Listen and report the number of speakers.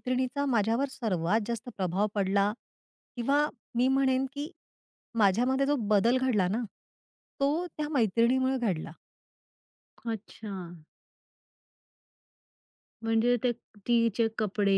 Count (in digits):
2